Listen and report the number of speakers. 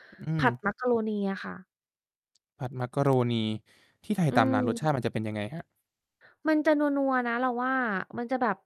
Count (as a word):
two